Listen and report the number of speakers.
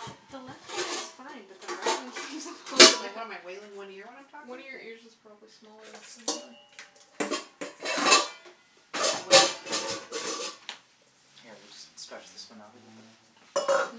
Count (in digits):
4